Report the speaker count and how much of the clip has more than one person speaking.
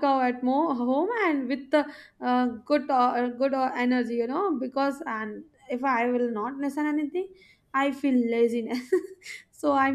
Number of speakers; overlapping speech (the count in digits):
1, no overlap